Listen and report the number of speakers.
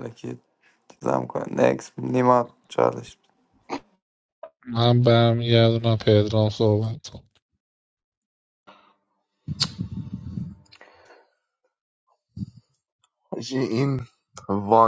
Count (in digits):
3